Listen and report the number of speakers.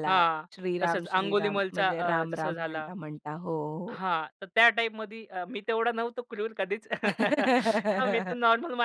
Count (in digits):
2